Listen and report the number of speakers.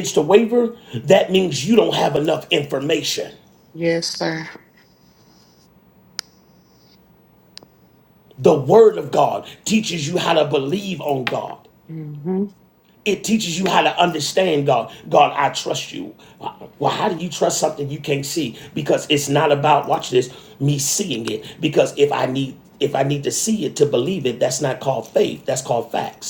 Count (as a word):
two